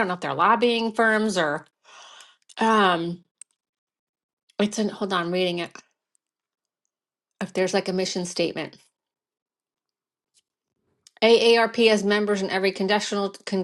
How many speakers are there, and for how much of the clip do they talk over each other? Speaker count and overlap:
1, no overlap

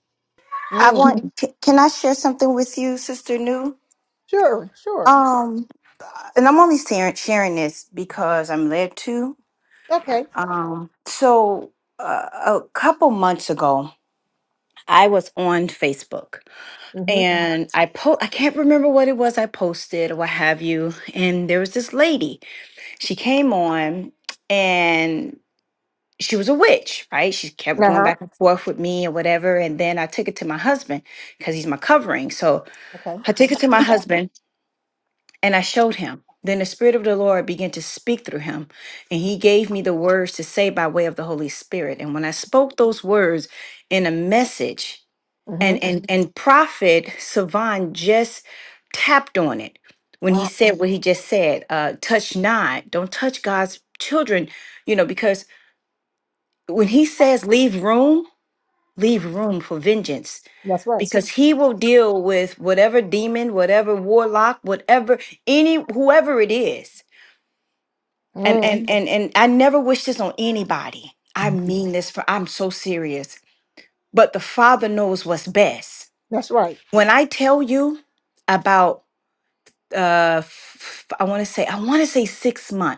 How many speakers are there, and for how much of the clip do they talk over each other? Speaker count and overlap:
2, about 2%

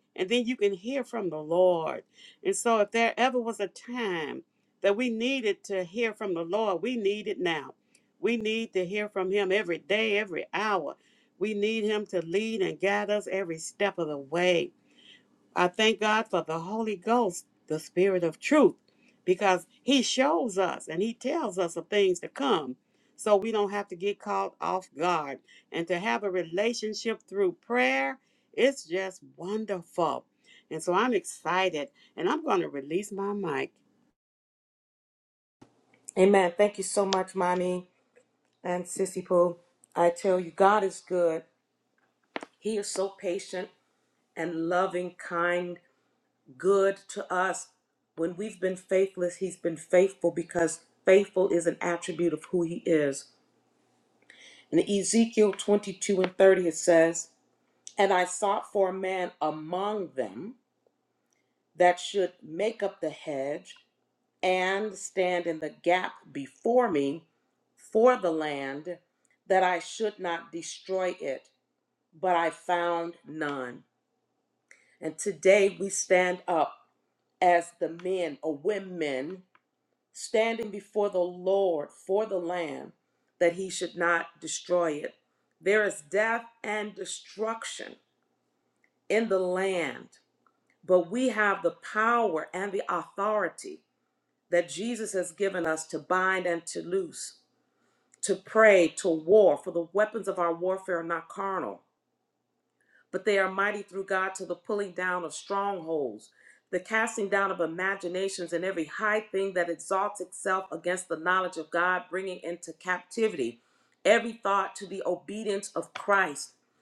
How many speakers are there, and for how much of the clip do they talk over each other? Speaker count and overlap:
2, no overlap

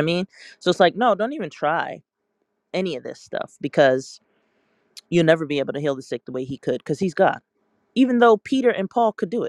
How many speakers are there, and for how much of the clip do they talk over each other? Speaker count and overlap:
1, no overlap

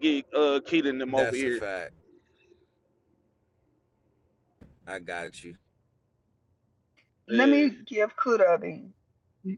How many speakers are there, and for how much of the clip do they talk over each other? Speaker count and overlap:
3, about 10%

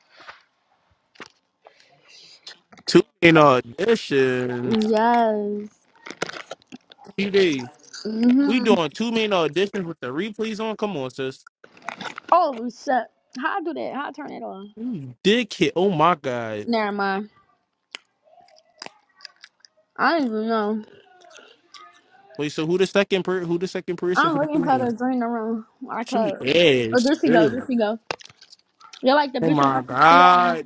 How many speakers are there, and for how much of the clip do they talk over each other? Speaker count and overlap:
2, about 11%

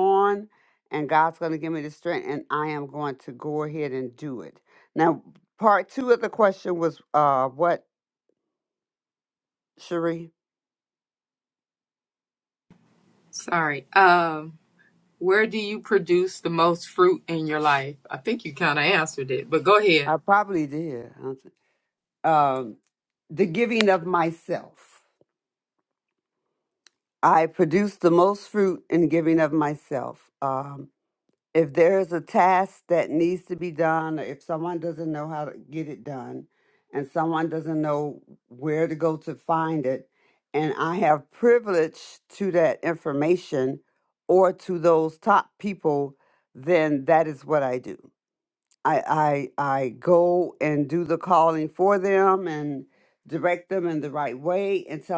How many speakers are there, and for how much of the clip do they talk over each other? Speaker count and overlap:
2, under 1%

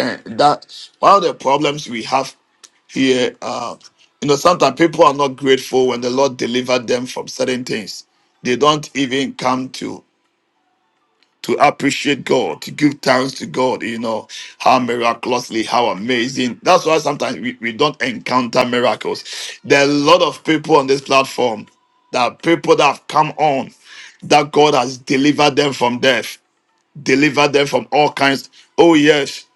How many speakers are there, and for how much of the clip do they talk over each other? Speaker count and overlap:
1, no overlap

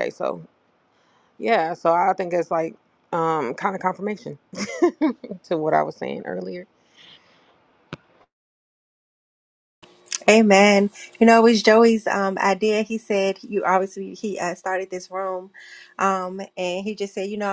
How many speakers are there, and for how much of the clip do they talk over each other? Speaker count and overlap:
2, no overlap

